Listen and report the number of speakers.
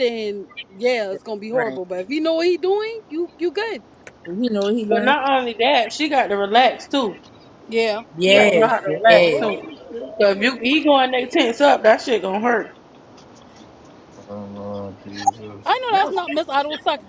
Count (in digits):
4